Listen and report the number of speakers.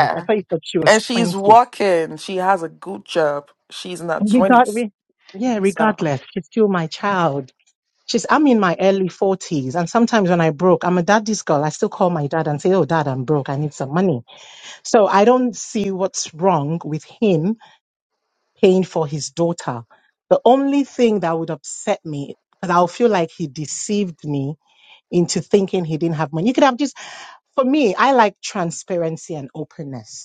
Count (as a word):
two